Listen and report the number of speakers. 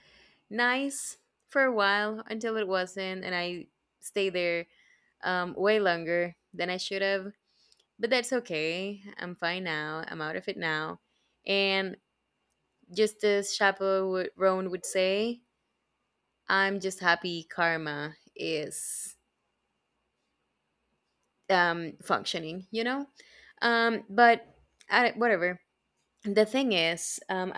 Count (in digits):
1